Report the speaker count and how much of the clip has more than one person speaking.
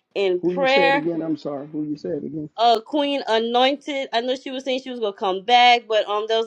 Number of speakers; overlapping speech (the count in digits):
2, about 10%